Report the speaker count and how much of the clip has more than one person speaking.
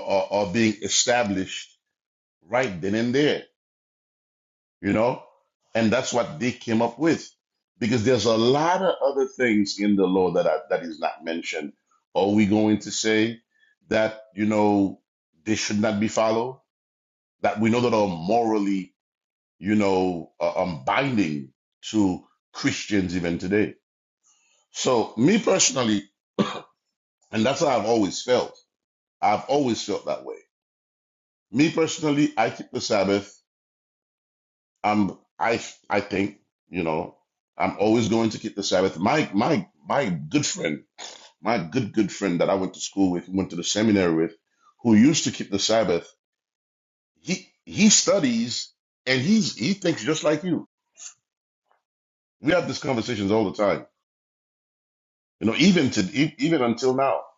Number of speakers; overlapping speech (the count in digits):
1, no overlap